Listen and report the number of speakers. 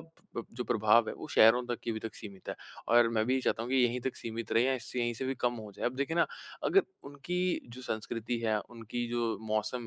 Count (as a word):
one